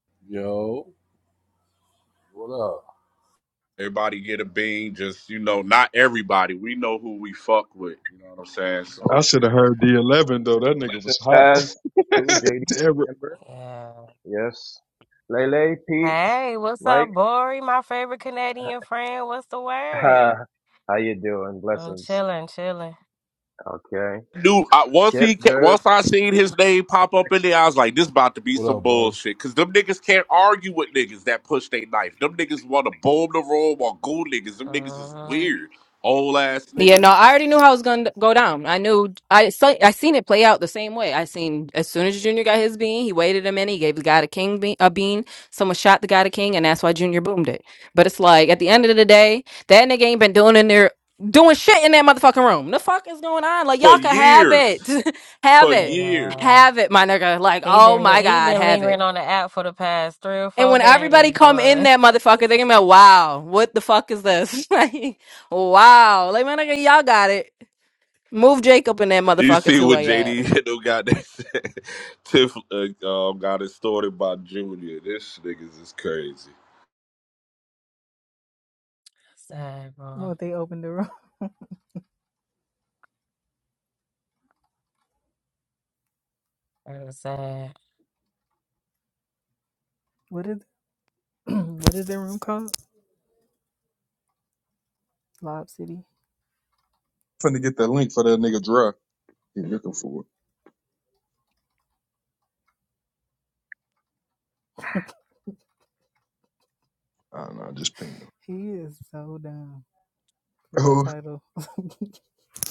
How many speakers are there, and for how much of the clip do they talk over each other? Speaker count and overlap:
7, about 10%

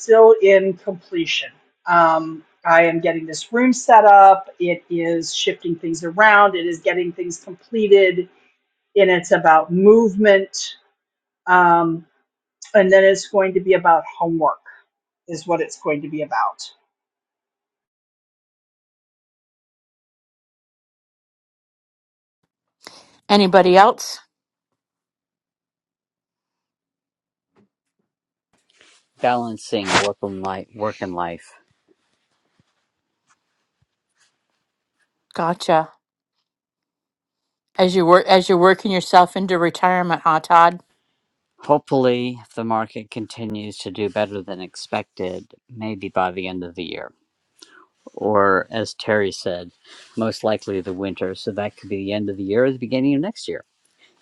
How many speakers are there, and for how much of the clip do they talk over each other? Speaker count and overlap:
3, no overlap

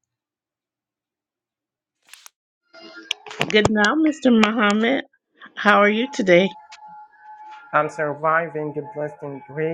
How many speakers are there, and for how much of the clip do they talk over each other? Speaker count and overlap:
2, no overlap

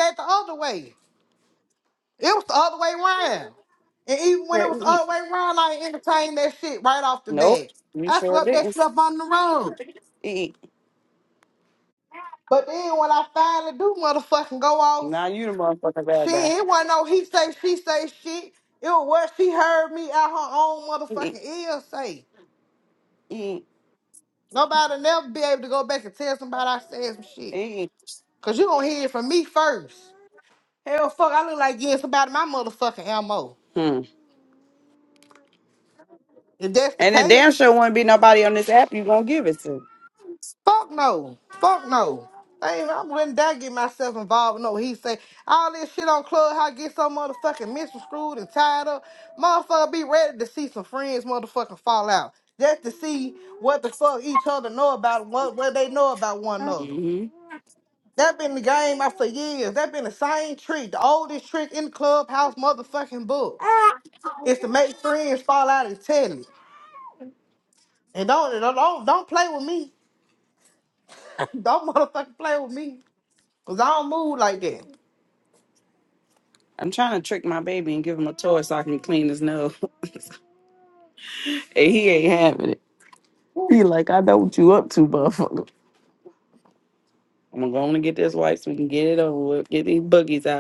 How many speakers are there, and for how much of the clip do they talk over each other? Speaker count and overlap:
2, about 3%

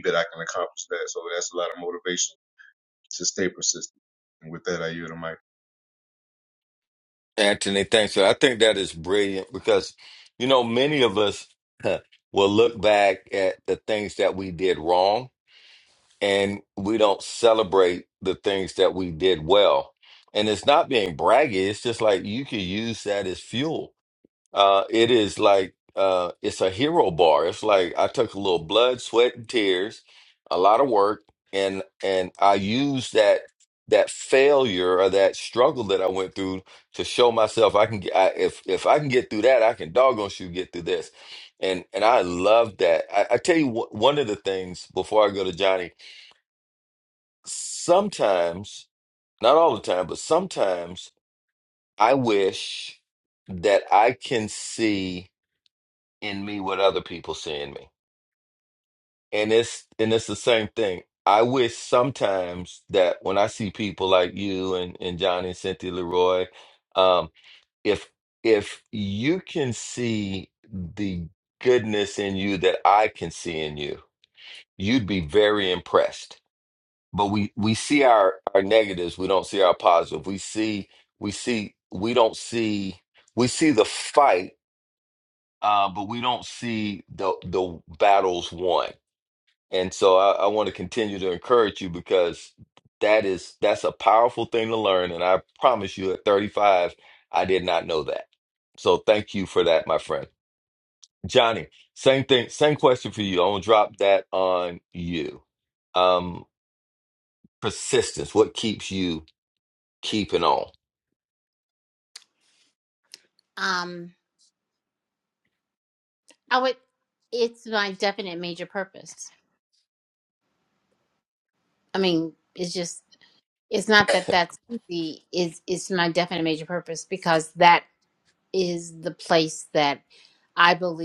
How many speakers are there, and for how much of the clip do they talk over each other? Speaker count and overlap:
3, no overlap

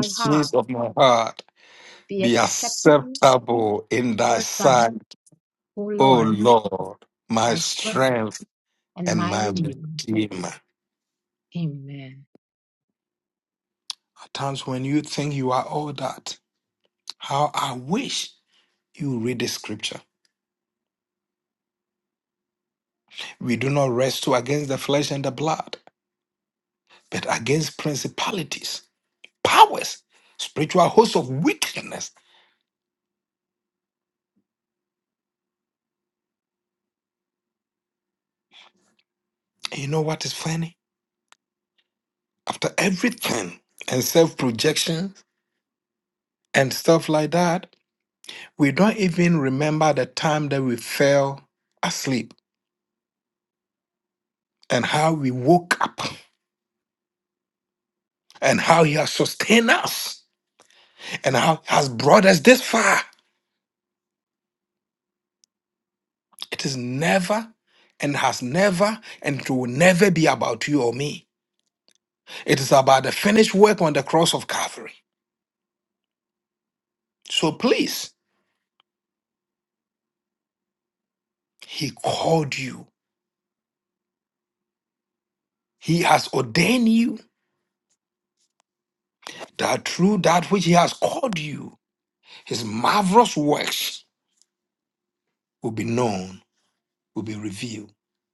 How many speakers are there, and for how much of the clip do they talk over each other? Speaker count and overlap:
2, about 4%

